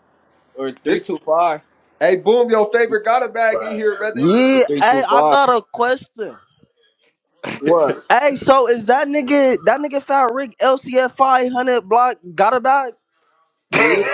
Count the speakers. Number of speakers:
3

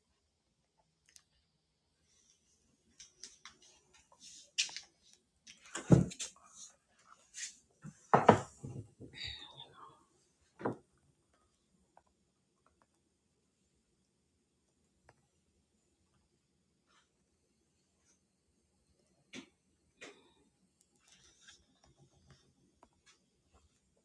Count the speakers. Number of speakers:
0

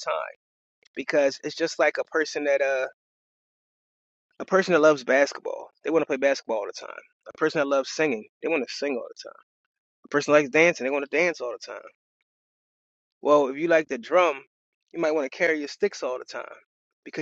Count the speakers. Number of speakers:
1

